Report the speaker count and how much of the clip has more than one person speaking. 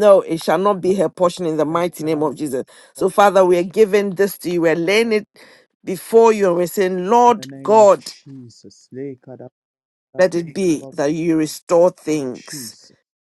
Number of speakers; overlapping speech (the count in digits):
2, about 14%